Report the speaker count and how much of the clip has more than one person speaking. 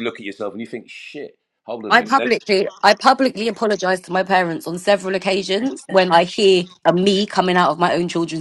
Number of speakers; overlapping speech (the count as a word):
two, about 5%